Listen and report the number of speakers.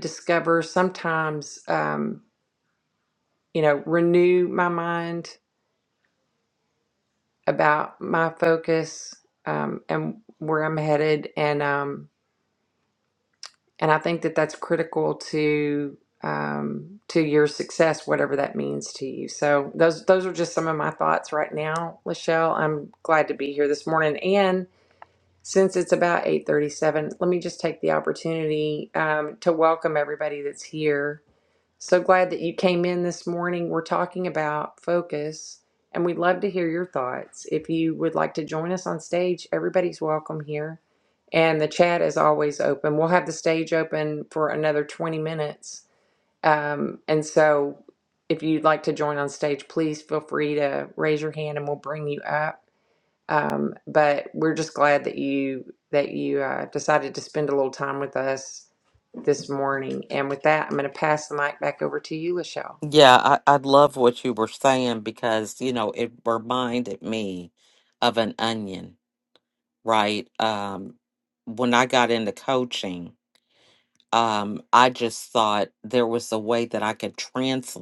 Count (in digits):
2